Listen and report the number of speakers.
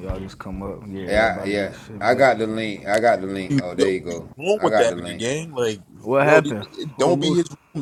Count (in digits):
3